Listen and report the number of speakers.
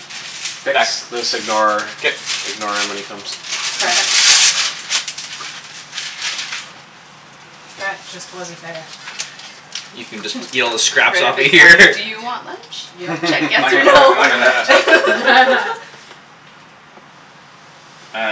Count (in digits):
4